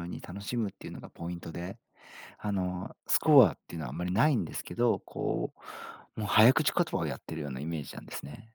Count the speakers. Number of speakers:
1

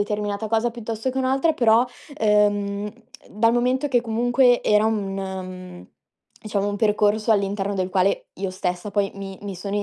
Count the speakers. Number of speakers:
1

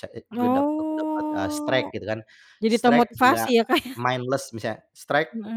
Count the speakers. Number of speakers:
2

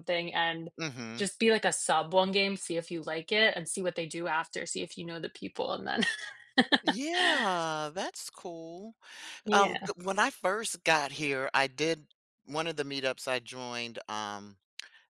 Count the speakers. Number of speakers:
2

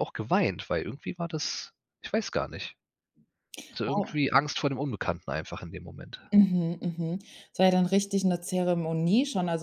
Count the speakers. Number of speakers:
2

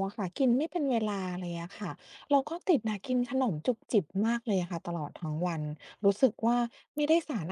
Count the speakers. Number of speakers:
1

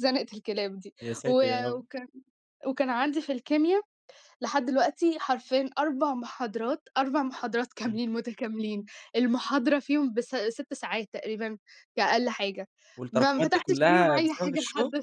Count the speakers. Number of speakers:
2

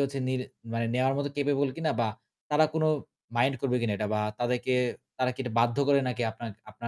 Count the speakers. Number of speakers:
1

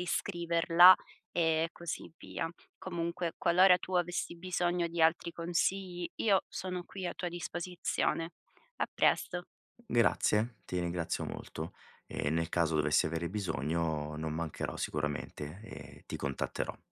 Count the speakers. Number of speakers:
2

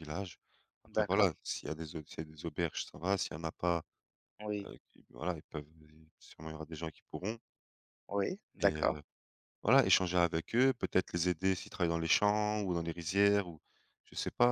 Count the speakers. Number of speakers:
2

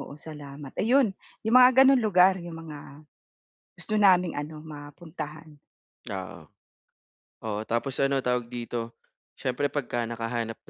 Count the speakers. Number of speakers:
2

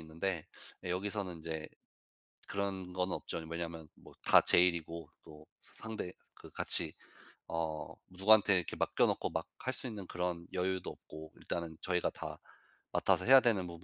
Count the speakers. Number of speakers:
1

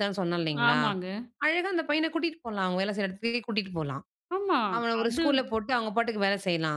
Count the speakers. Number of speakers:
2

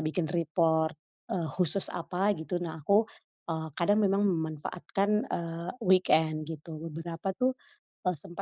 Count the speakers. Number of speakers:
1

